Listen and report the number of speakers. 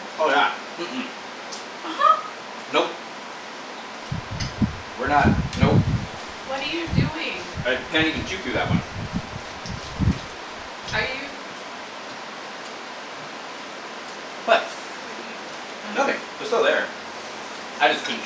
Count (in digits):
2